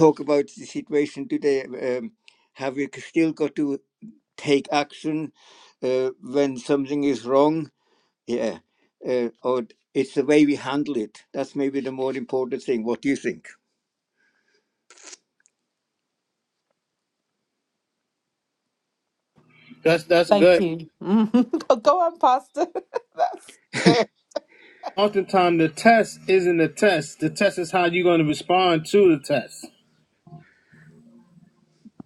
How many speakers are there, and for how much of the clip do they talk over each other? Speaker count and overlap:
3, about 1%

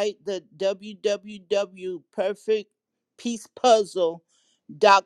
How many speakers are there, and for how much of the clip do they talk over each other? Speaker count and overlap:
1, no overlap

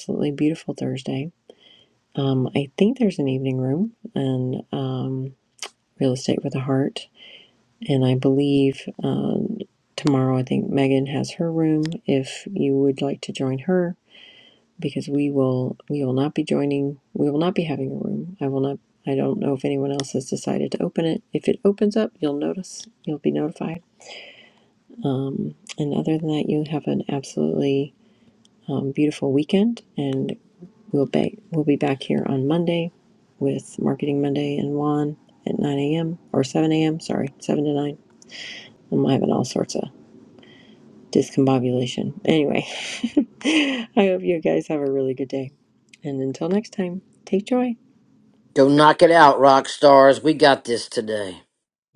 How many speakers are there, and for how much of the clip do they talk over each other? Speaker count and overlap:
2, no overlap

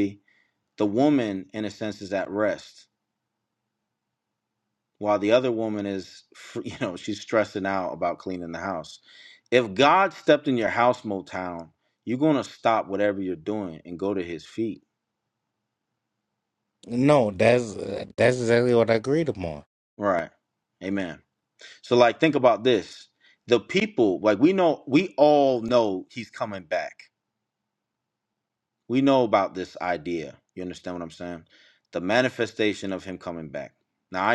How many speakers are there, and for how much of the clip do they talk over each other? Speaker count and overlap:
2, no overlap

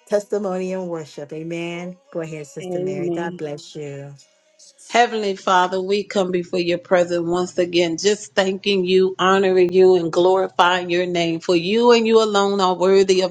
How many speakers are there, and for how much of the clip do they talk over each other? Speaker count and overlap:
2, about 6%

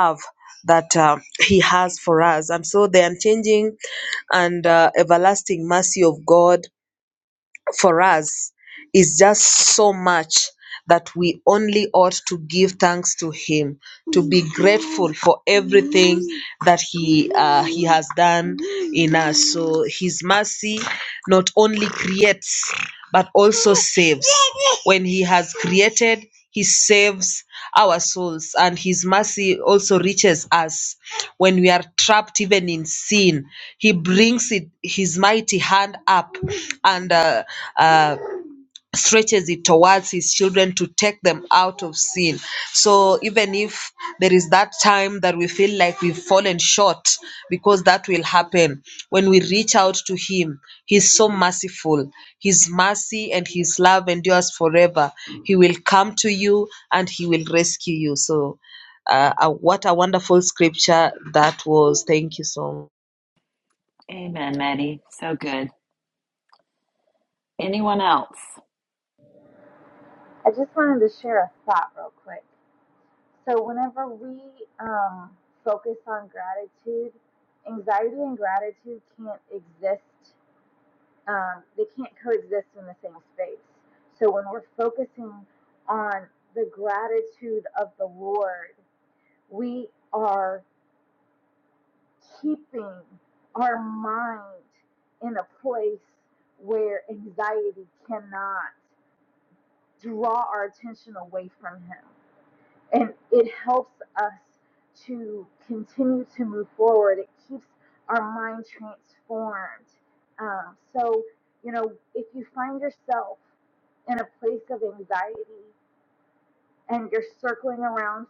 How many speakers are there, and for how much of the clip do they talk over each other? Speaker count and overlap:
3, no overlap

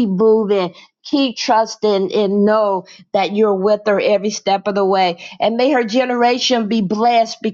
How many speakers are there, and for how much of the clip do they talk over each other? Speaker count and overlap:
1, no overlap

